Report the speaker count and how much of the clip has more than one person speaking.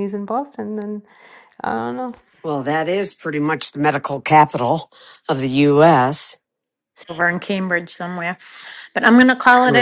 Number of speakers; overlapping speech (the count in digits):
3, about 2%